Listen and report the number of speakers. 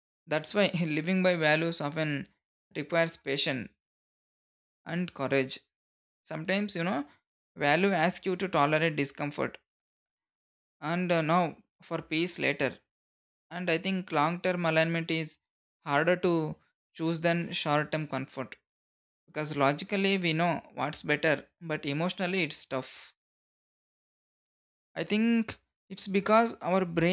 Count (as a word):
one